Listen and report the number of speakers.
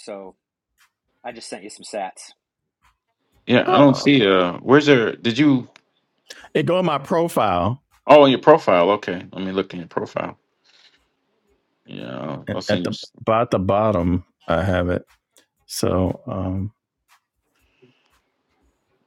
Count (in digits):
3